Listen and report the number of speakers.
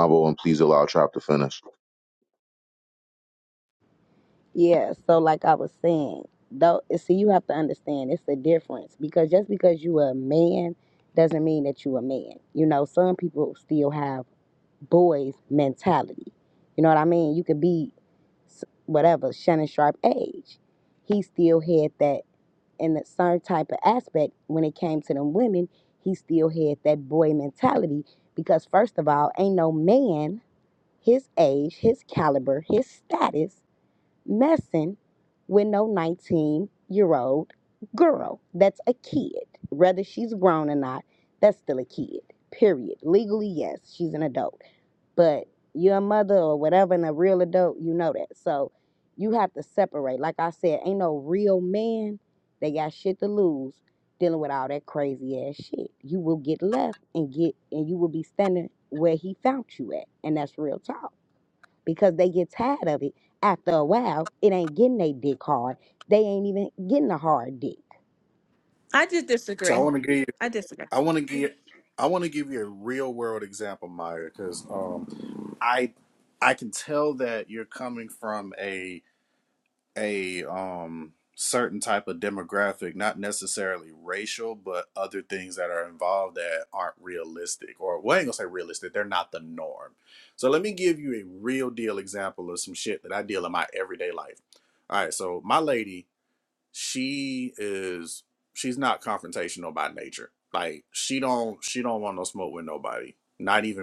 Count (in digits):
4